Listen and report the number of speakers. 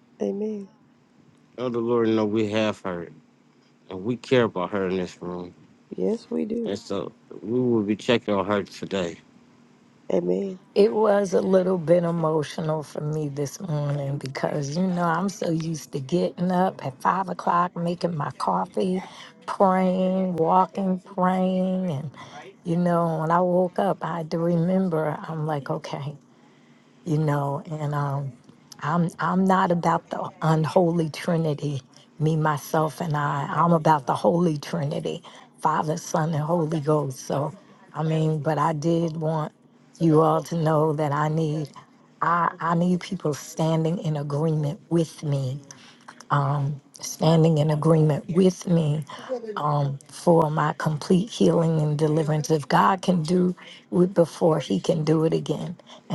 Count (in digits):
3